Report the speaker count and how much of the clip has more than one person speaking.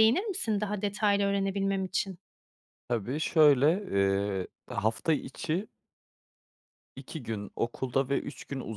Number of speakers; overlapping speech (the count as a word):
two, no overlap